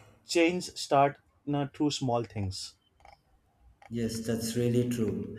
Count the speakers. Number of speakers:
two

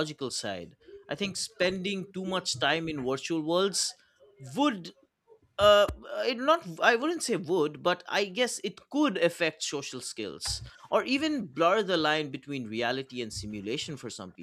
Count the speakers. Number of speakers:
one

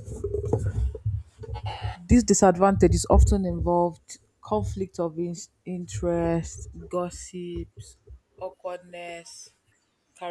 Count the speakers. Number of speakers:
one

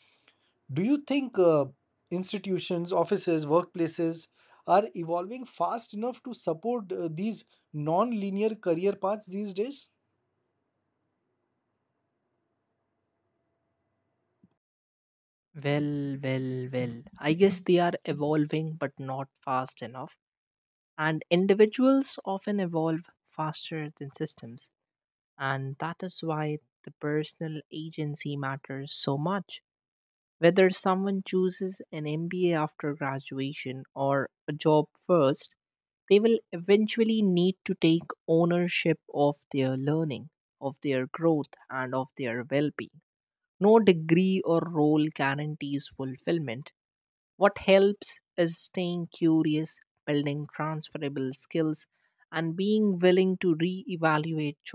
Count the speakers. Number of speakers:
two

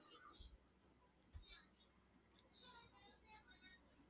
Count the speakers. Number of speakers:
zero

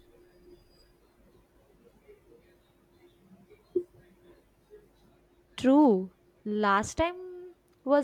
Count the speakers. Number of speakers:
one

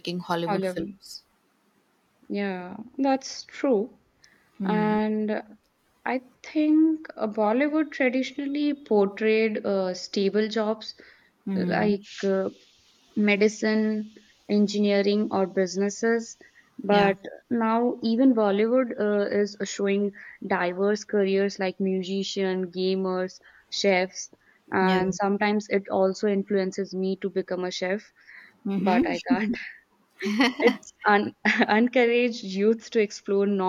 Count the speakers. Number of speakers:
two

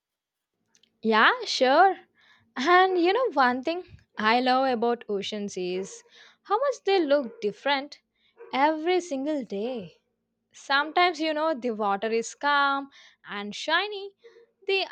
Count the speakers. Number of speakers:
one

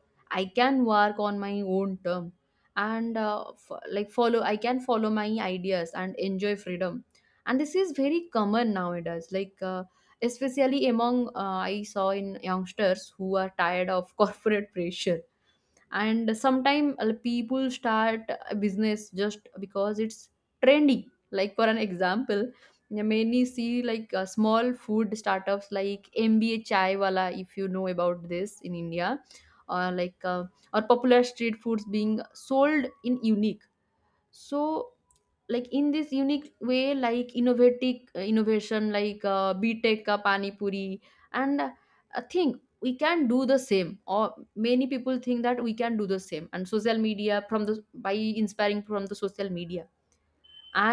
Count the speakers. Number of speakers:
one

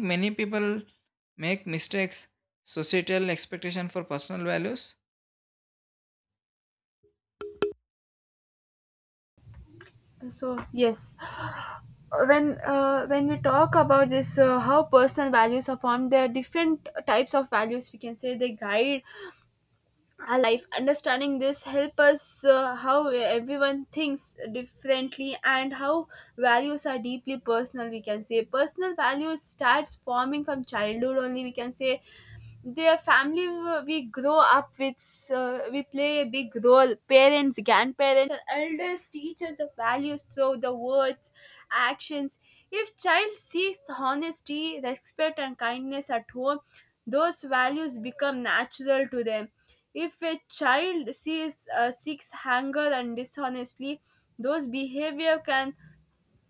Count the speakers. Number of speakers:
two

